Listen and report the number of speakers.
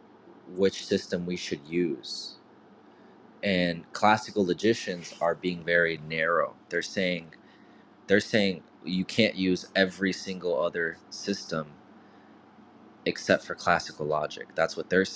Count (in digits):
1